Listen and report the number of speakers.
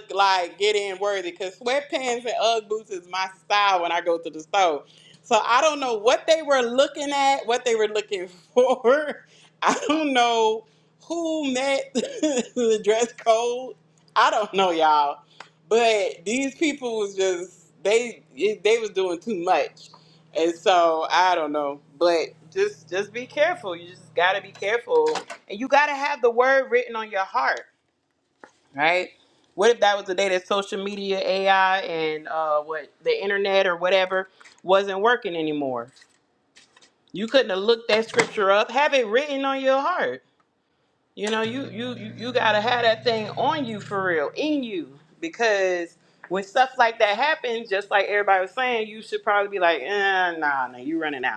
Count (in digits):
1